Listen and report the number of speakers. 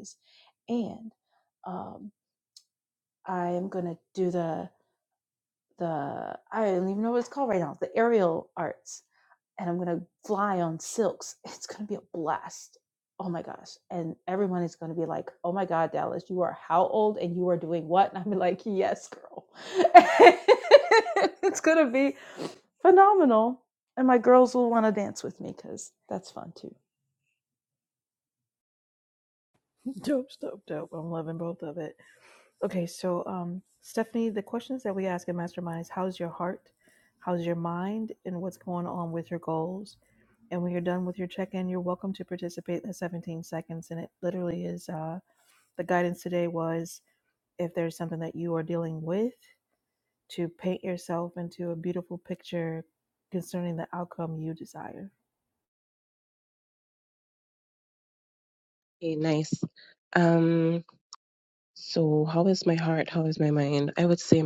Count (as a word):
three